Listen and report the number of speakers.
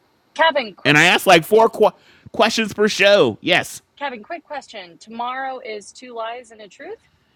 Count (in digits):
2